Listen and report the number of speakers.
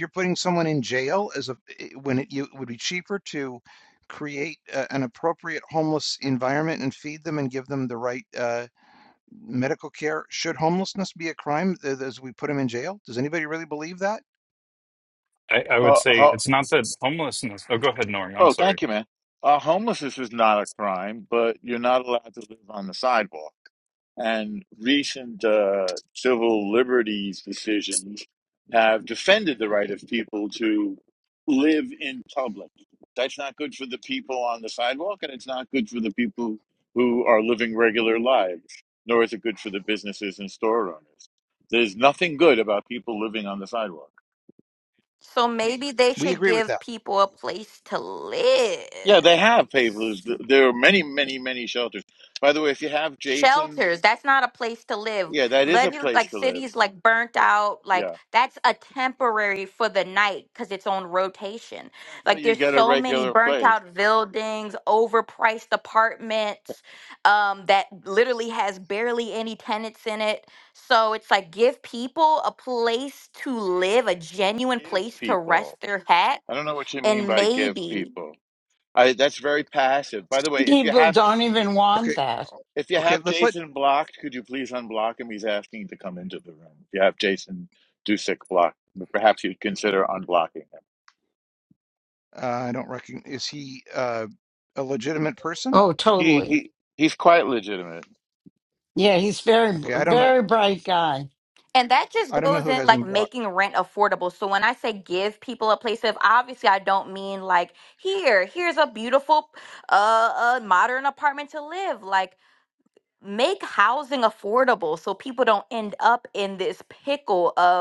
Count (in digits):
5